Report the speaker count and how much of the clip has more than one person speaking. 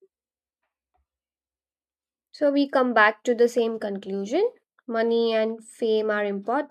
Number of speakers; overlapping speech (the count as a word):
one, no overlap